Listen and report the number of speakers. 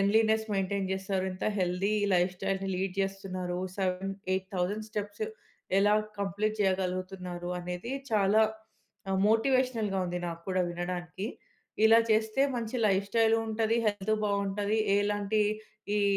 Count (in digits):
1